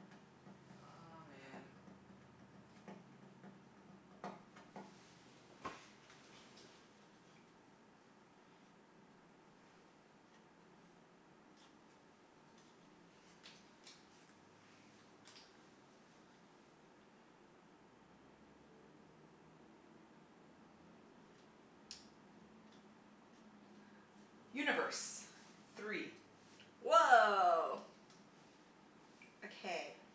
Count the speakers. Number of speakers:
two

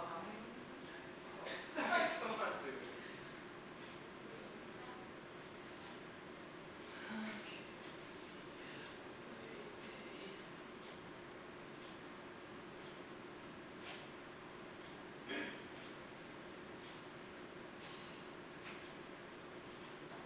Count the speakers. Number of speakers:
two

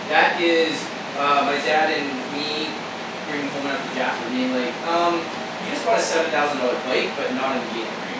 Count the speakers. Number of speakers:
one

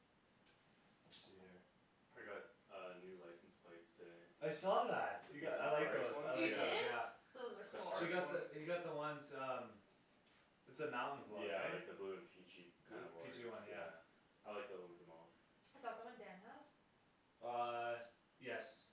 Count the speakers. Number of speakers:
three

